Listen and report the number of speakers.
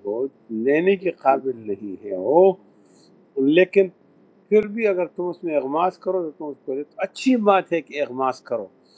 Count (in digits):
1